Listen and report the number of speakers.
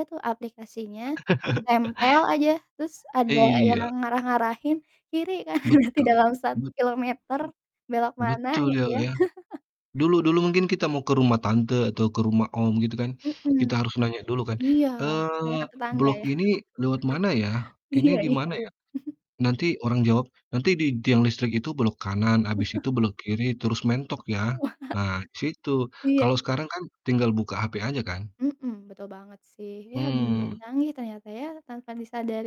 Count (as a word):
two